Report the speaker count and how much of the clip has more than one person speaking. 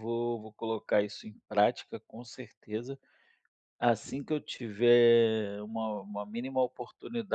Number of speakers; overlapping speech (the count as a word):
one, no overlap